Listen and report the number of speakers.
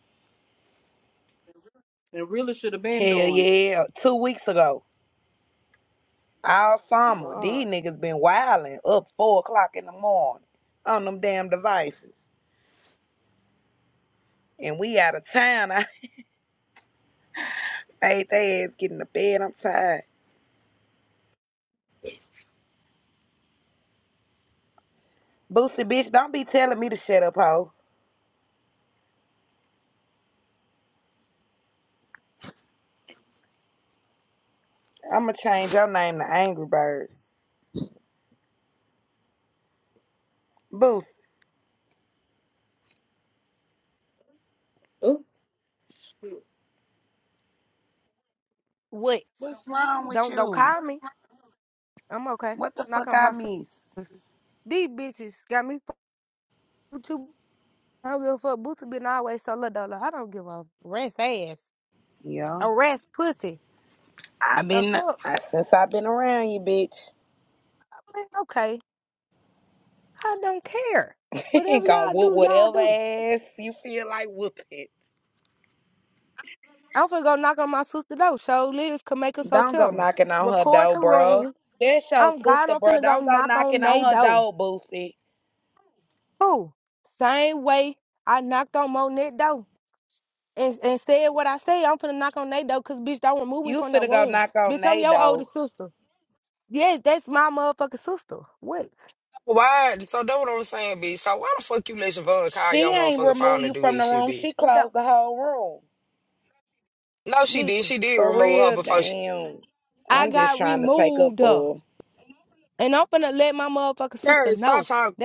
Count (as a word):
four